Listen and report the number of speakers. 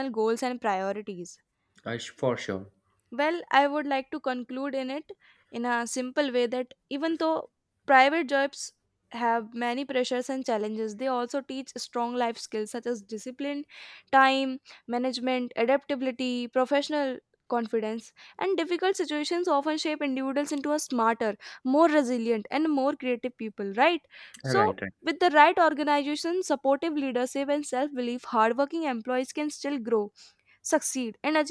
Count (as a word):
two